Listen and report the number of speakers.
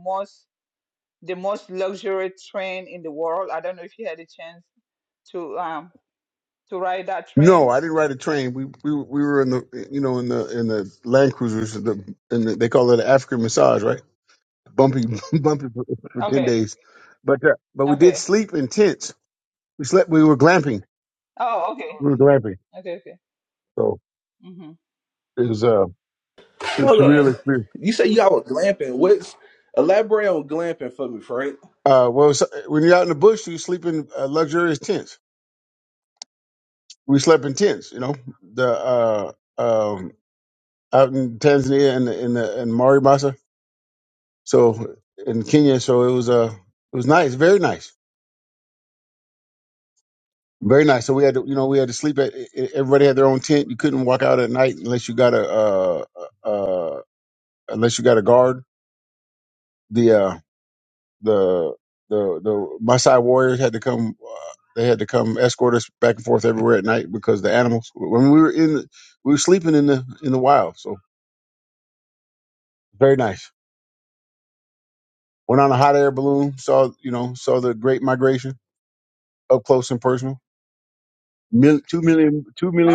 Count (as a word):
three